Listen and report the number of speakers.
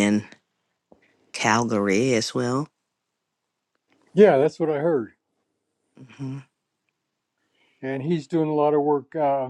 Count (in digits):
2